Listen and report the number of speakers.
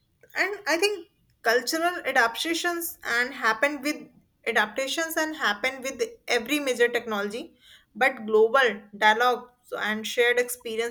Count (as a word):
one